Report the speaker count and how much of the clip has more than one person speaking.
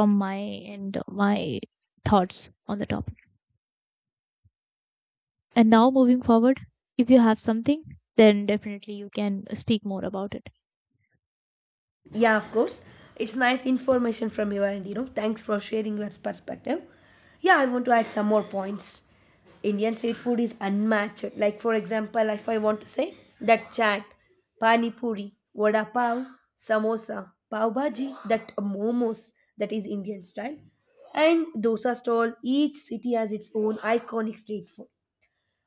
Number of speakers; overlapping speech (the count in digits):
2, no overlap